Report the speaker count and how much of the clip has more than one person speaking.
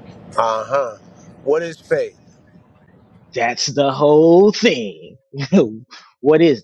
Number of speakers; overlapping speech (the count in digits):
2, no overlap